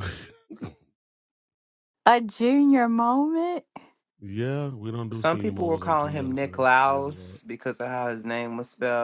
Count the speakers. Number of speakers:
3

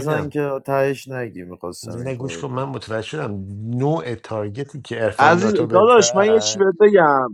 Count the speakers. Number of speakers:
3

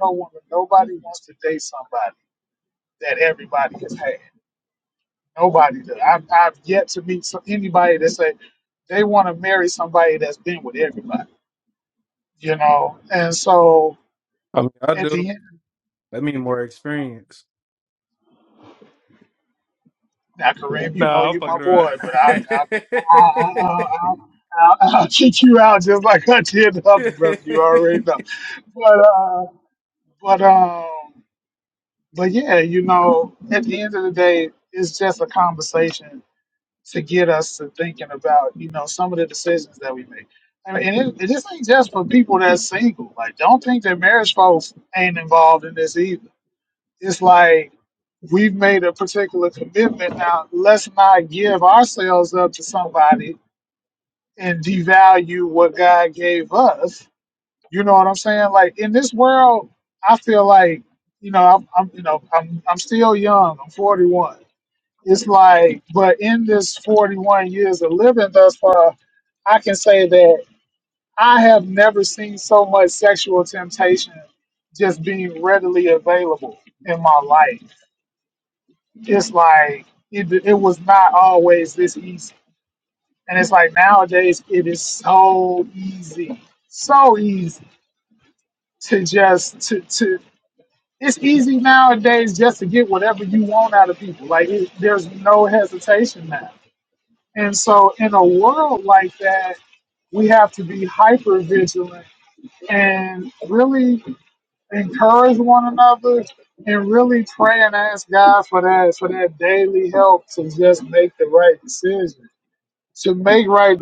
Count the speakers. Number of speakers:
2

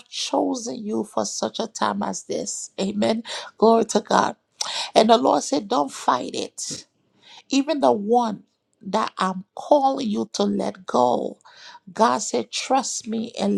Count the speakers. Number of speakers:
1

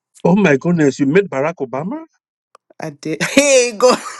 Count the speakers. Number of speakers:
2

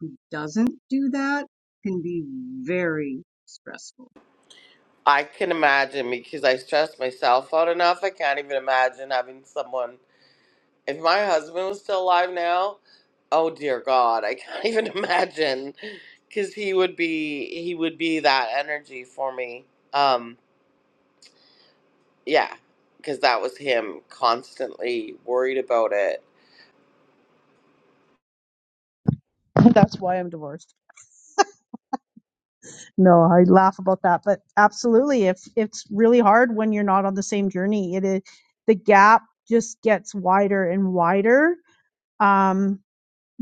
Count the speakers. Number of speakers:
3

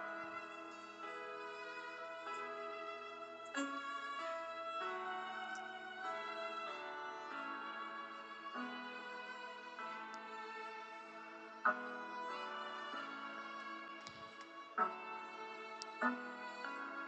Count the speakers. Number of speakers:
0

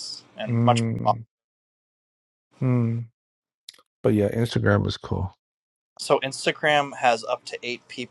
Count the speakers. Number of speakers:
2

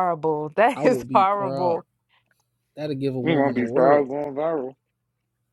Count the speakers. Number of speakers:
3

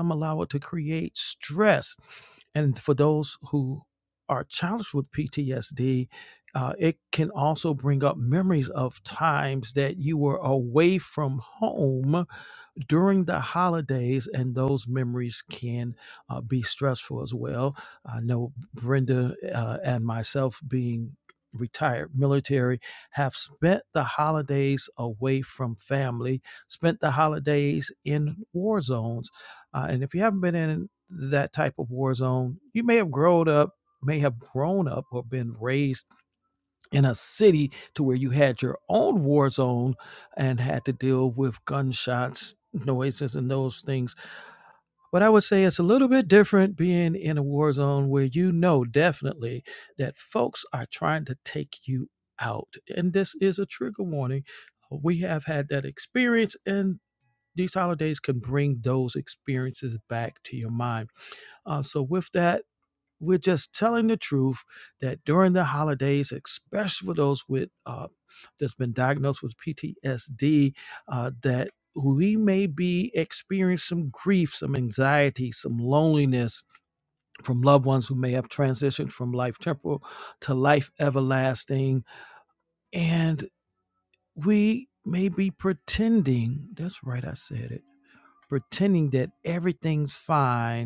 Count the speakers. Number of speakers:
1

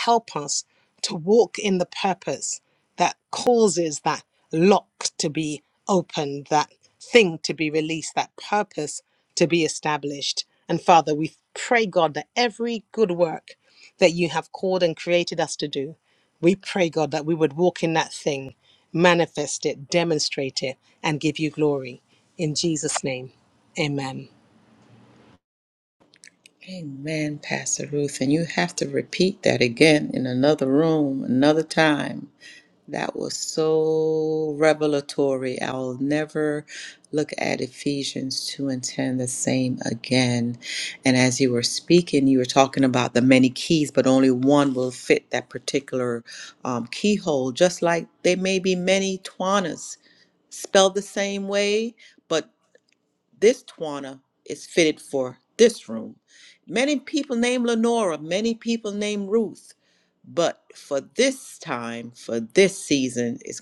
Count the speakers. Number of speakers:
2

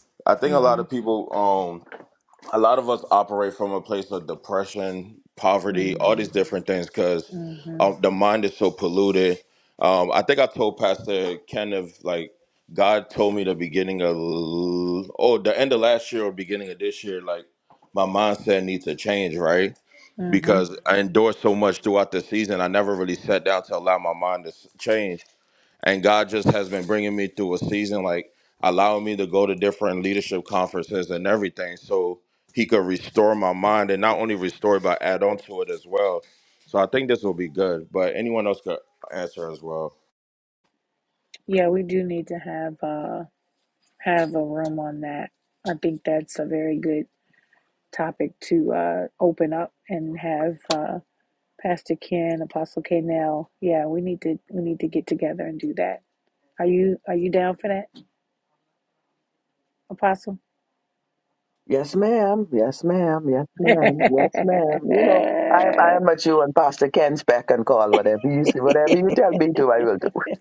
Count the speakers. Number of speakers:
3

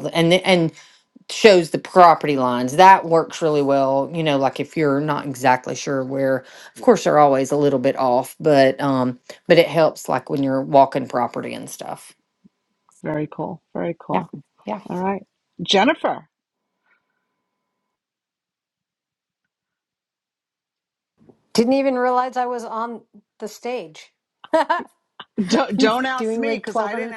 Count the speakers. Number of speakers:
3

